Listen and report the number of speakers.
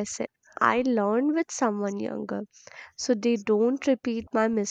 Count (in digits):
1